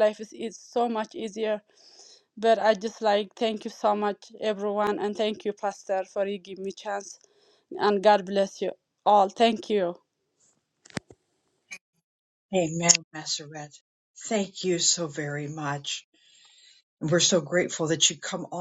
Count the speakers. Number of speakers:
two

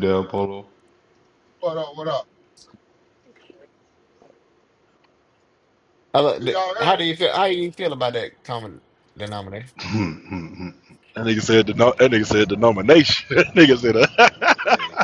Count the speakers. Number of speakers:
four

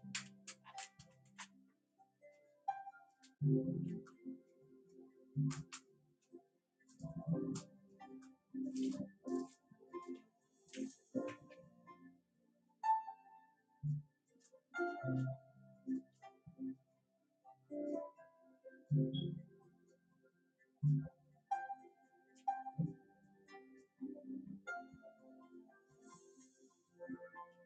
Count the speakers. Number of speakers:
zero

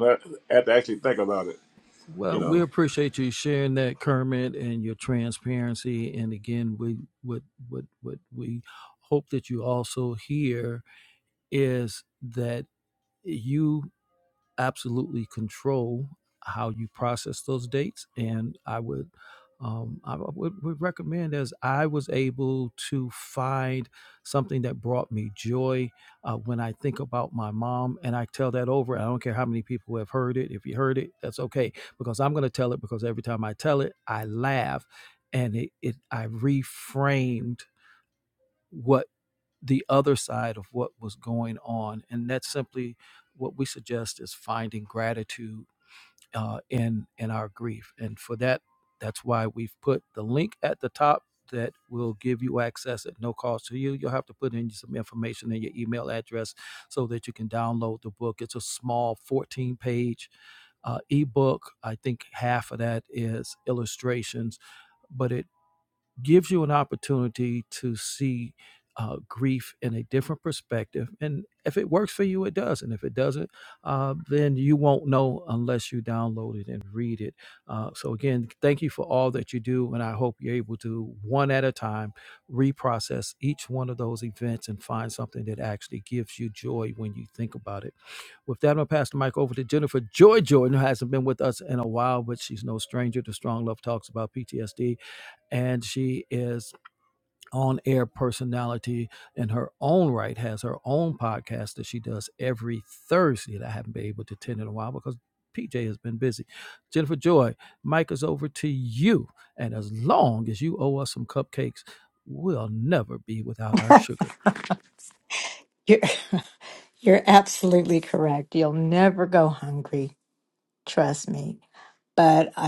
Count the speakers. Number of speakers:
three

